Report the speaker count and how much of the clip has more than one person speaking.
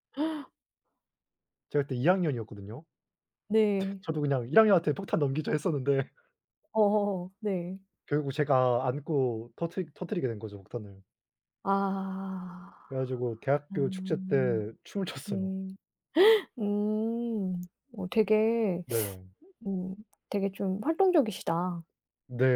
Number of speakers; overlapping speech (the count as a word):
two, about 5%